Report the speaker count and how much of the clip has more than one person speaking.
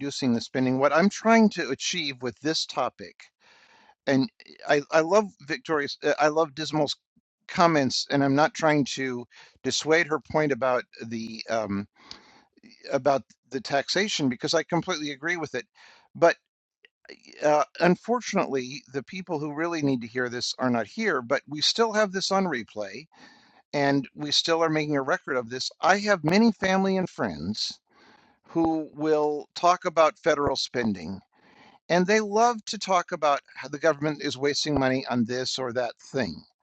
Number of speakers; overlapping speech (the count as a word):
one, no overlap